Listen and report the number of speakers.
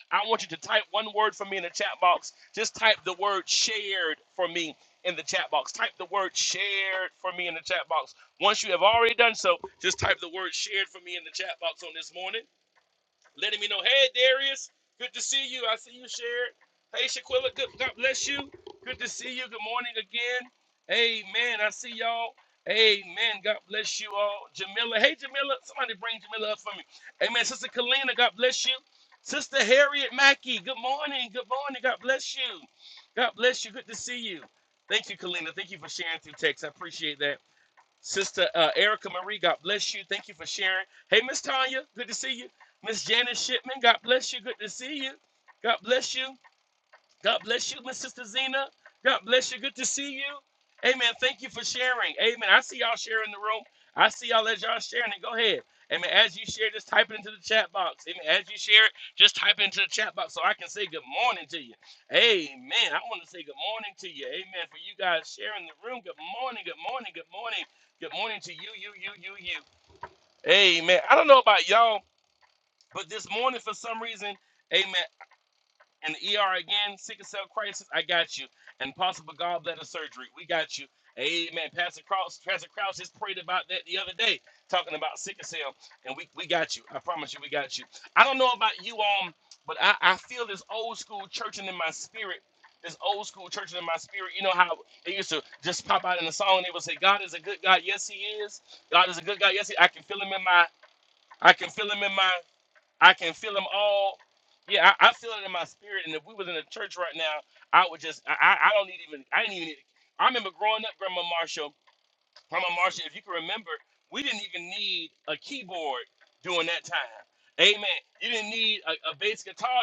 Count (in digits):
1